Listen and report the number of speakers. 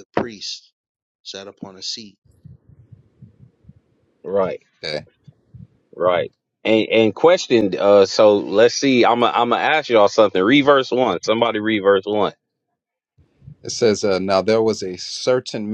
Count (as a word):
three